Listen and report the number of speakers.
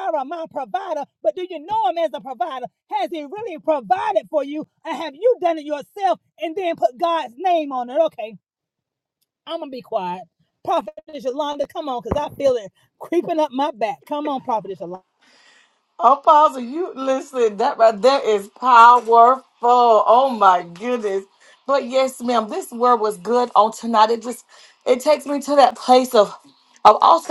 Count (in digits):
2